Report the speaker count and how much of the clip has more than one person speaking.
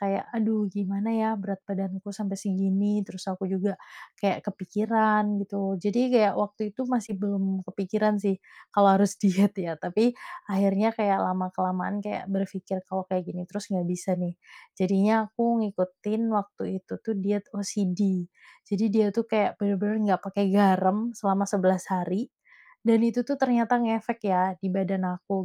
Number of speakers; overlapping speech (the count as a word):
one, no overlap